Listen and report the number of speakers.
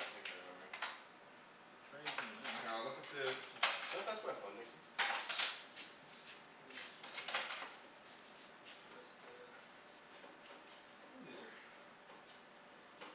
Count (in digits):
2